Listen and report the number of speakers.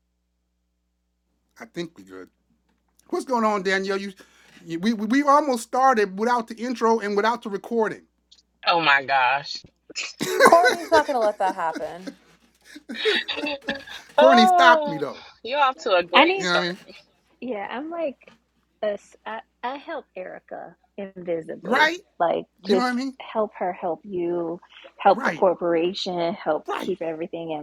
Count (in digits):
4